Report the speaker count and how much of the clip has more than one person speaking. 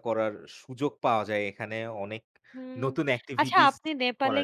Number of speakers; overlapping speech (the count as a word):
two, about 14%